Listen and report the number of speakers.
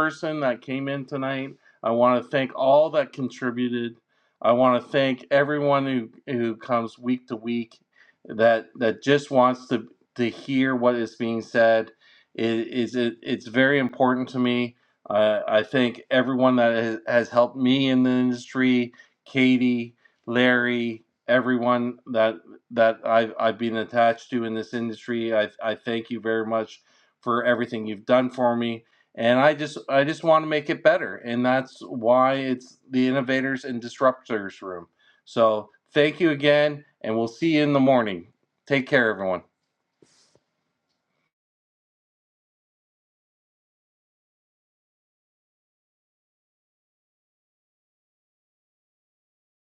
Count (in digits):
1